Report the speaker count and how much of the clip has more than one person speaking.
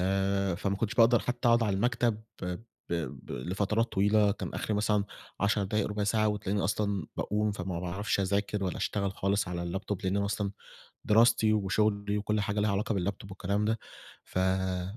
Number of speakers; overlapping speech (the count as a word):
one, no overlap